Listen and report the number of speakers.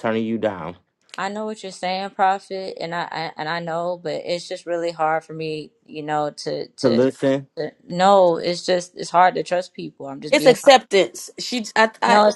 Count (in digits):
3